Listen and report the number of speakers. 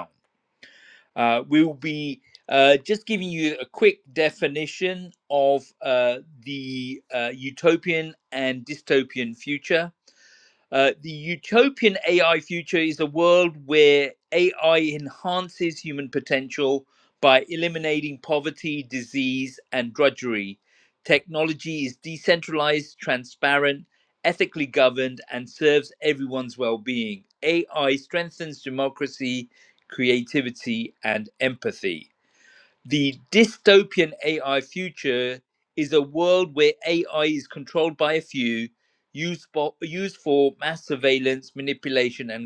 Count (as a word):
one